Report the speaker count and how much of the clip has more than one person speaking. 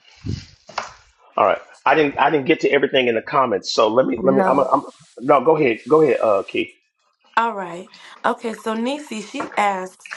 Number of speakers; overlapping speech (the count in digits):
2, about 5%